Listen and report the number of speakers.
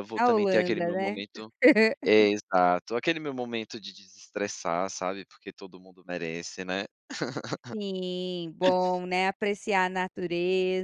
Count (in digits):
2